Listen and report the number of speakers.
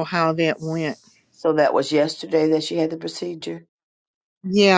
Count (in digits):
2